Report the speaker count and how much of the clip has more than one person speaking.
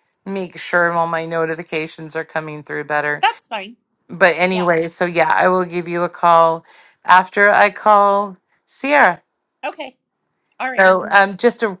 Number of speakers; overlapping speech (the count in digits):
2, about 3%